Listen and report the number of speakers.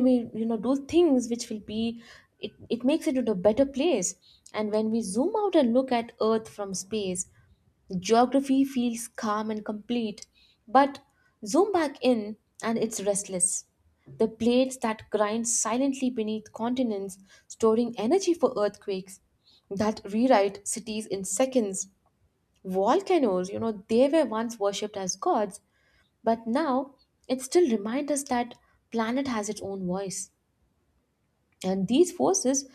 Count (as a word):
one